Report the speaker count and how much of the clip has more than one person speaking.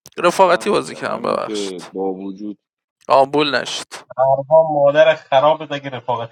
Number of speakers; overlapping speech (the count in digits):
3, about 23%